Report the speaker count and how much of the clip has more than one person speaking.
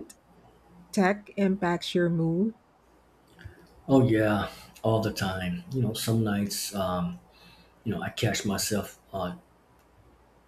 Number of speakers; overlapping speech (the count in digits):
2, no overlap